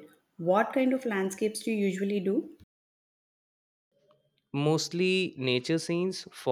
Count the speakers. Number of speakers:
2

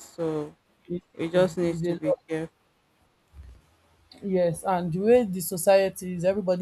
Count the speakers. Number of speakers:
2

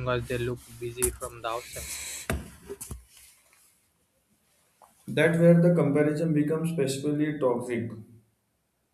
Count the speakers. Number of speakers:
2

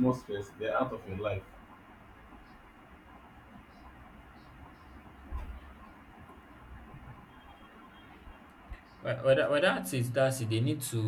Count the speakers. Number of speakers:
2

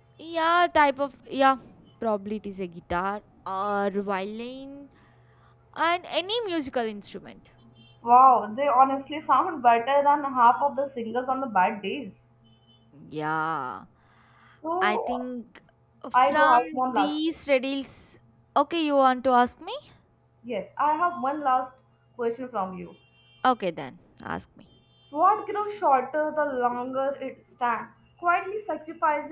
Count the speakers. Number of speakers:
2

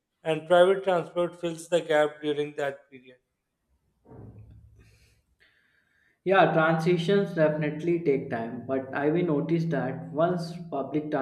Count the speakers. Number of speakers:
2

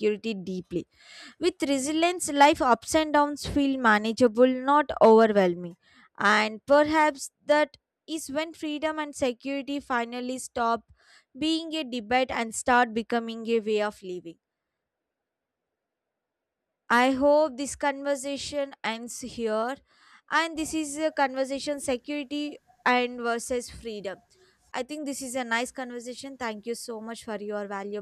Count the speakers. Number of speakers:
1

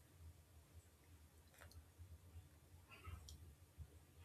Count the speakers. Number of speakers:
0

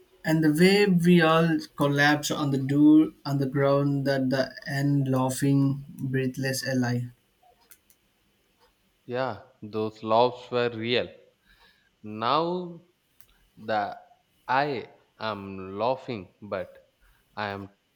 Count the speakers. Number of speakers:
2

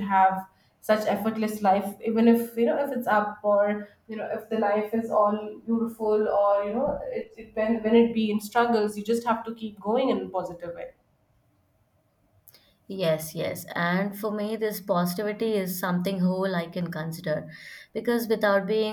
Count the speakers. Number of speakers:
2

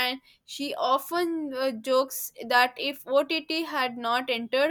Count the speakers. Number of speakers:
1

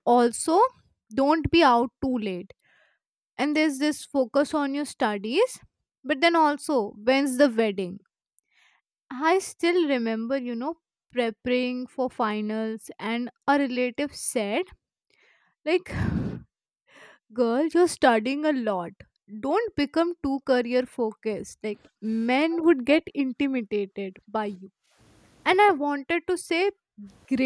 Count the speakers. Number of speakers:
1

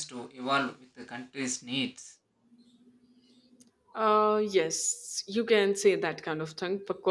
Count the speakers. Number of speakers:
2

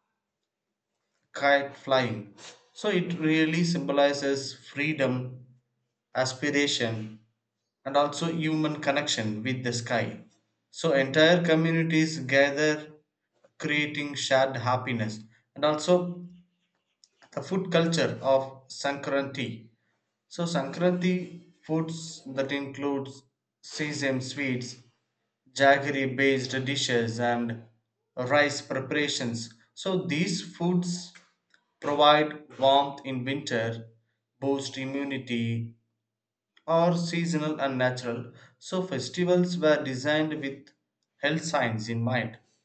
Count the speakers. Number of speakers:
1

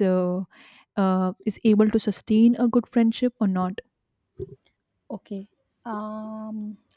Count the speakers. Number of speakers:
2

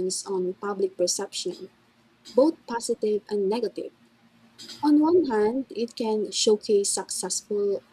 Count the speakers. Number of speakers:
1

